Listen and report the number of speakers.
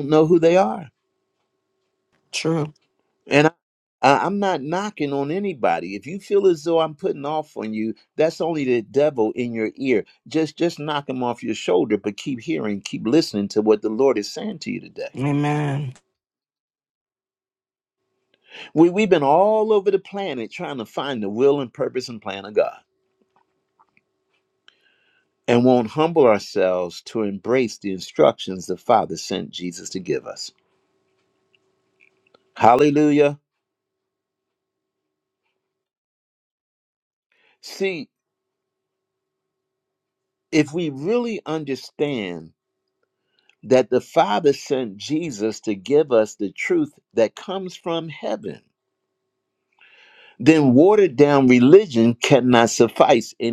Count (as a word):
two